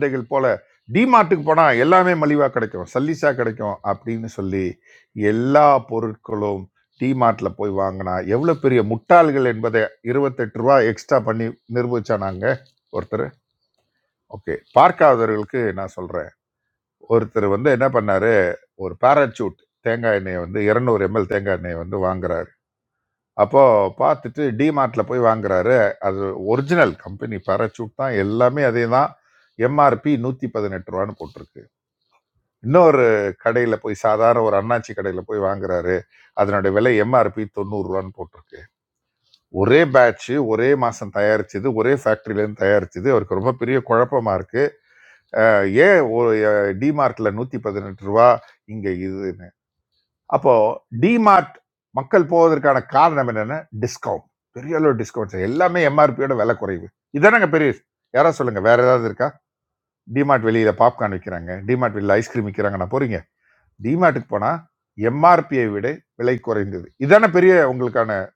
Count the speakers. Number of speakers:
1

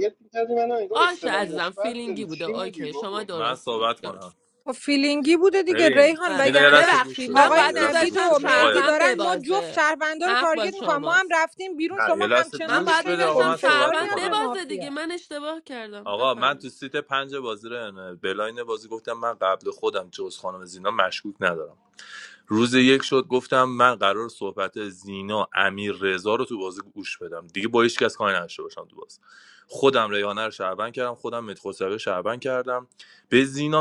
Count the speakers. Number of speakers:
4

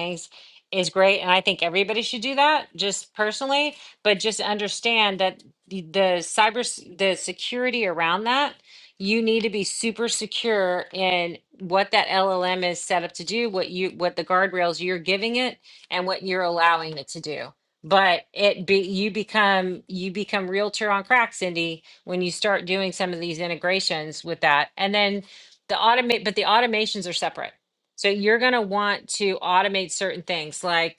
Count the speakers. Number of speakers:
1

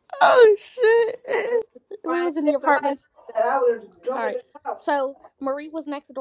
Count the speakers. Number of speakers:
3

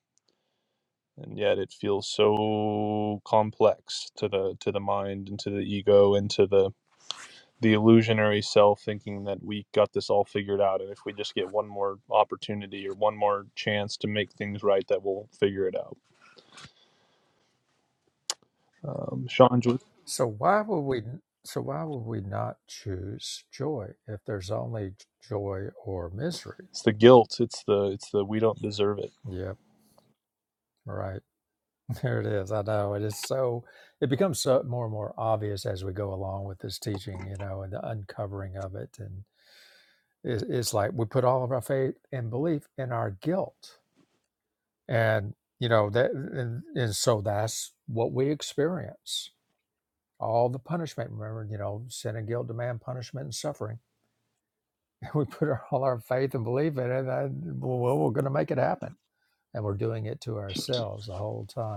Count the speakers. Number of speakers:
2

